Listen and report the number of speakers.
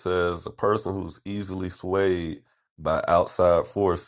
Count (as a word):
one